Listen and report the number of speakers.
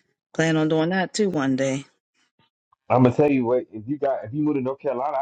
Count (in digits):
2